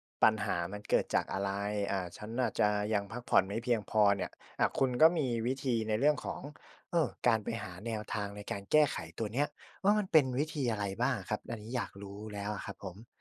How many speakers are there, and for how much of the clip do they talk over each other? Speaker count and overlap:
1, no overlap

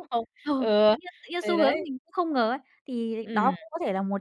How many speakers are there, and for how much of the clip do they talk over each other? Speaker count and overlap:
2, about 19%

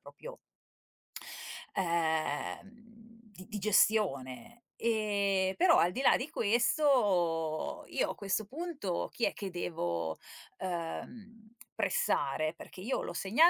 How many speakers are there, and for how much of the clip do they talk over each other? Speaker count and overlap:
1, no overlap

